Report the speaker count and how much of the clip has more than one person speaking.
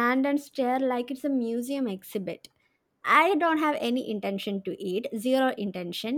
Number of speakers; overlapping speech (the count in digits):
1, no overlap